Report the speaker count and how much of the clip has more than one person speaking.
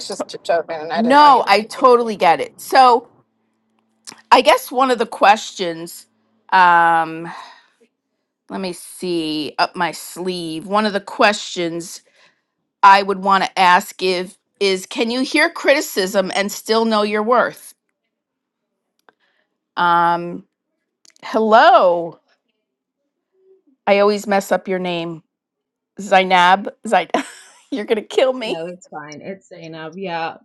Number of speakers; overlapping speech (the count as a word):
three, about 2%